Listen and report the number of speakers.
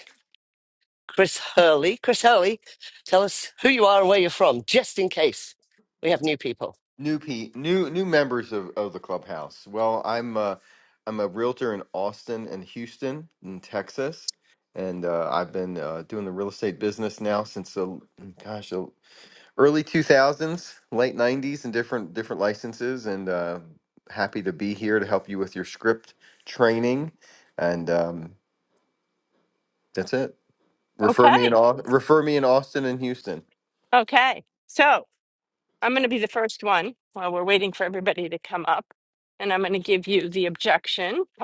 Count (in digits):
3